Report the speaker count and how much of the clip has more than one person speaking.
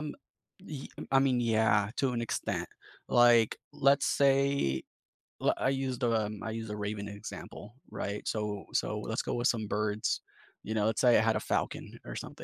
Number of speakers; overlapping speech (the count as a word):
one, no overlap